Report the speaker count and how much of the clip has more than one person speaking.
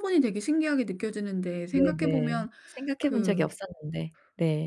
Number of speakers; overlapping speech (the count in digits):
2, about 25%